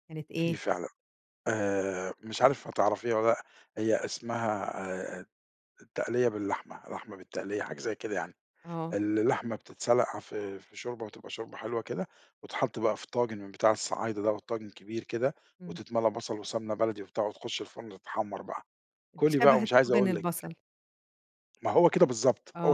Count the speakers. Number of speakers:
2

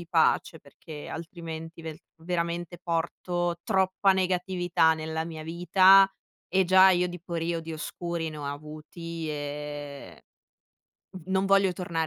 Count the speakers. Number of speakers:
1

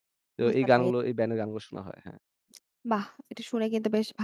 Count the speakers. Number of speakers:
2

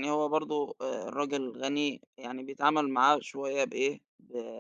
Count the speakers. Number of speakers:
1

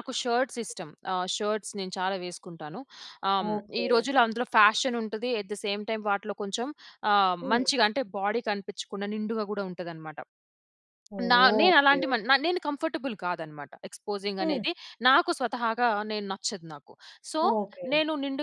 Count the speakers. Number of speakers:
2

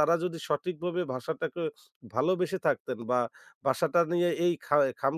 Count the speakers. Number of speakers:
1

